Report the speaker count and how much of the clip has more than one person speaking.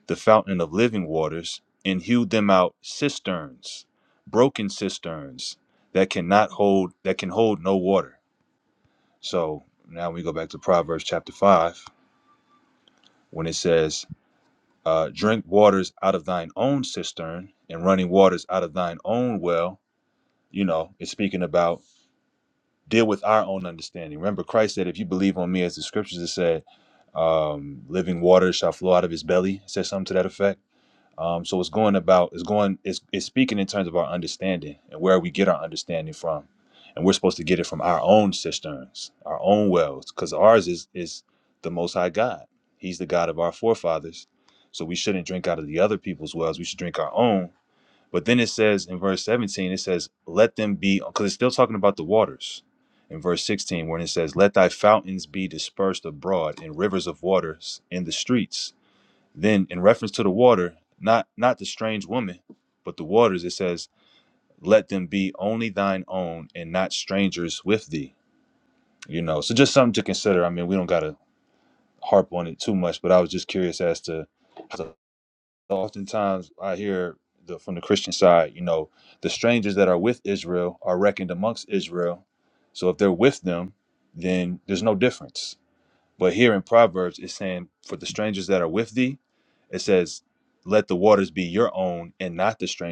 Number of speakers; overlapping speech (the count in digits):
1, no overlap